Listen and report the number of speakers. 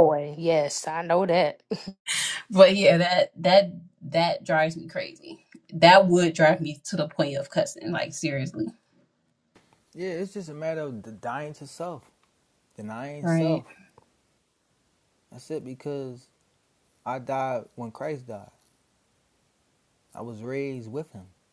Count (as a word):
three